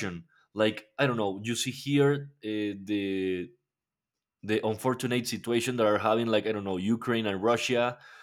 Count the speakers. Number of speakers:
one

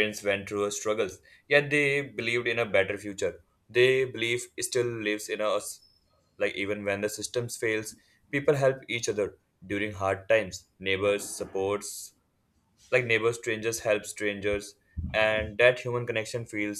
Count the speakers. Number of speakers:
one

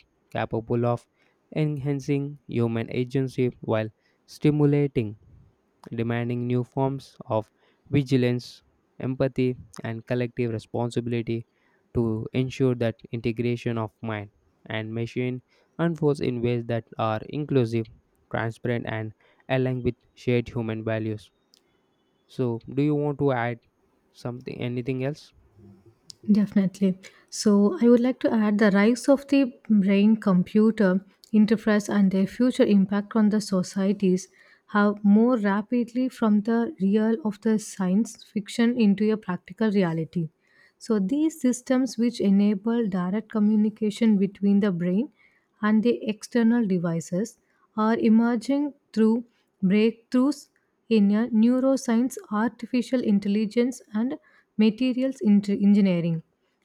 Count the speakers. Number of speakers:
two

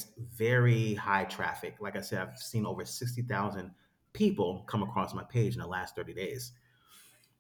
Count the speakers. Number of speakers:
one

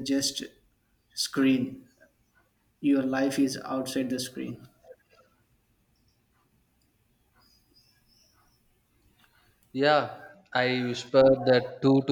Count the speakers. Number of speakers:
two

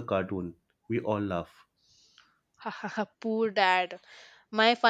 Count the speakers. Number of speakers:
two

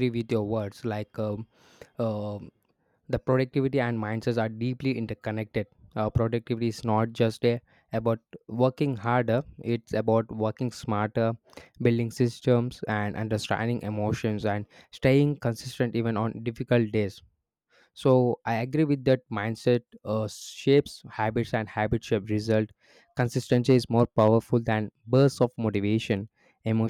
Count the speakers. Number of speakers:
one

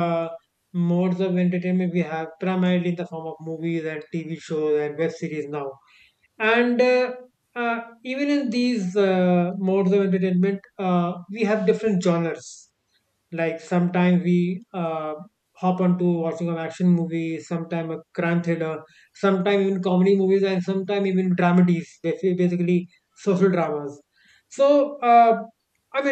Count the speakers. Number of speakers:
one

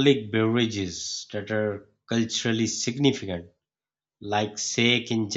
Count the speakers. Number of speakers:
one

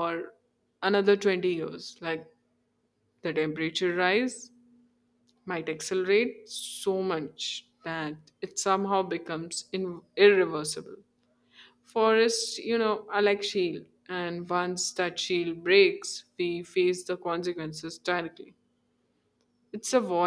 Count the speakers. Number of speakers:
one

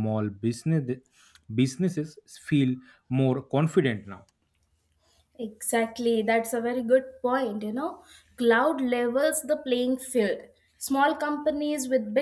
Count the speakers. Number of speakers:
two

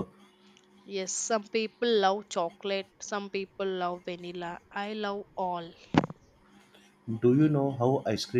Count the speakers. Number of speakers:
two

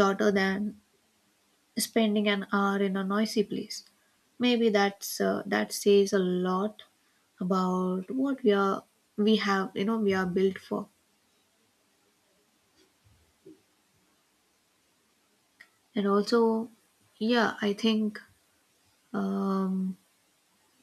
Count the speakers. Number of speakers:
one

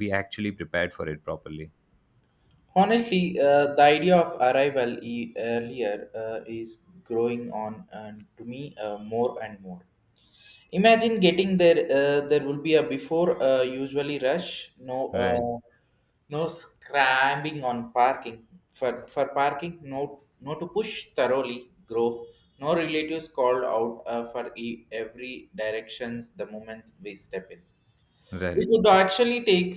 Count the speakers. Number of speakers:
two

